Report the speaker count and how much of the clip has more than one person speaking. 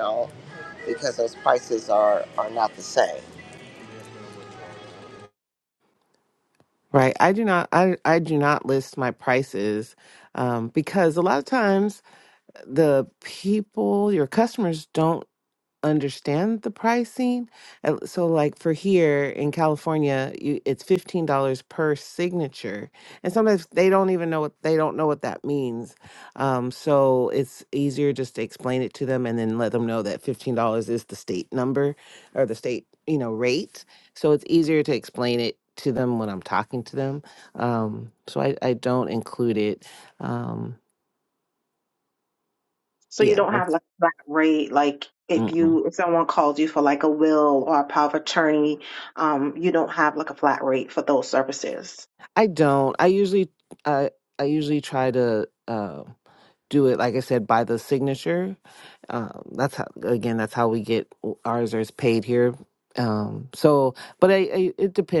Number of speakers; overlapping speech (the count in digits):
3, about 1%